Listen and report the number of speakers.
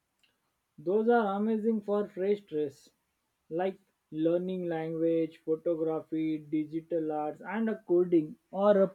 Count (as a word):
one